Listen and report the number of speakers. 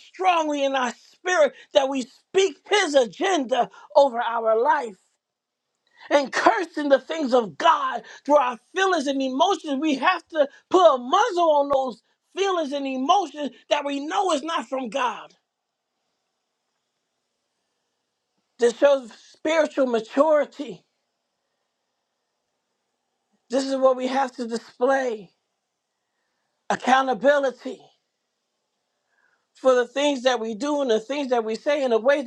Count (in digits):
1